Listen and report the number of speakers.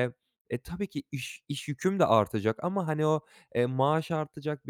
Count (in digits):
1